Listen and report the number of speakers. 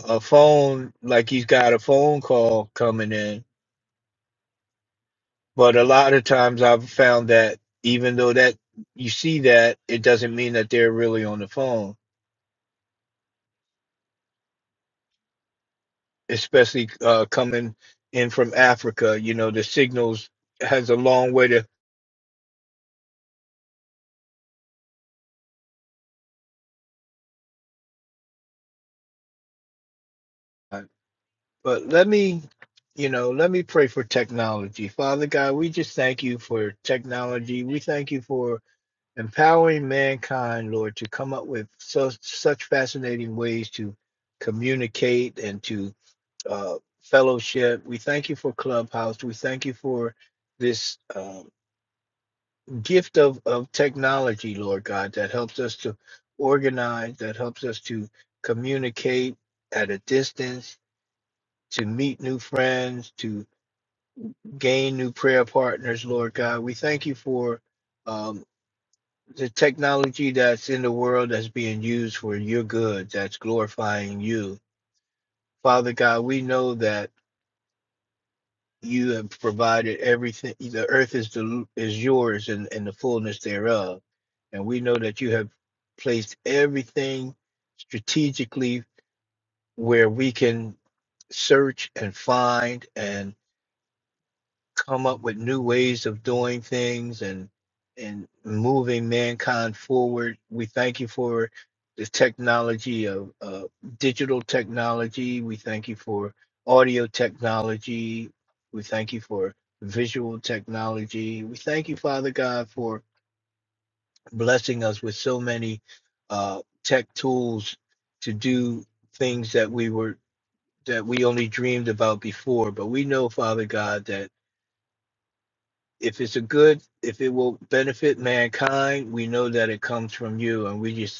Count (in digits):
1